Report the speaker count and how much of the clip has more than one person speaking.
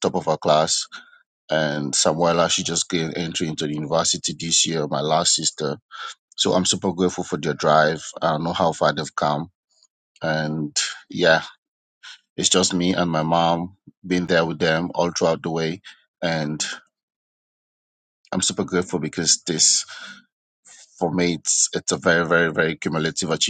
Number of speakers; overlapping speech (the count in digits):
1, no overlap